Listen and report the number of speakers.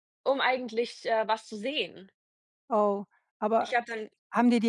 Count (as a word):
two